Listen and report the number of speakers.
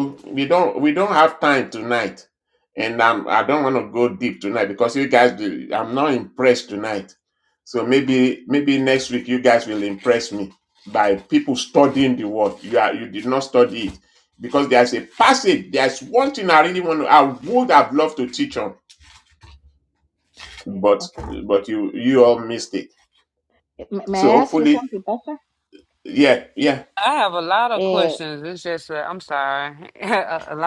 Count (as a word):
three